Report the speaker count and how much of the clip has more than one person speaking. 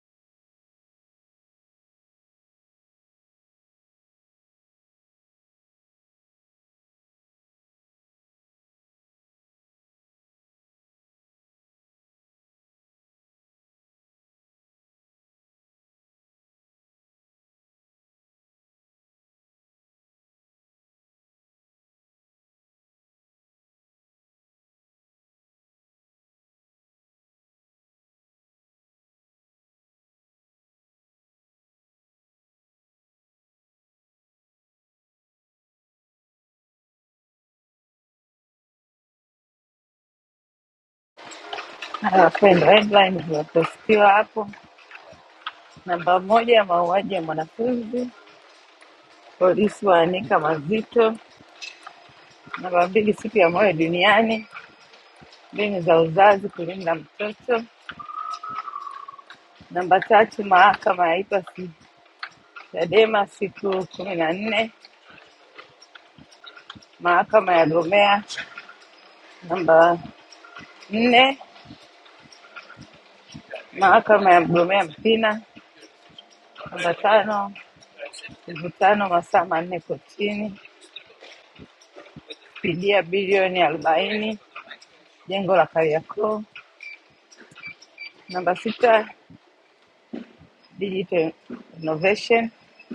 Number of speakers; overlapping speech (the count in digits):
1, no overlap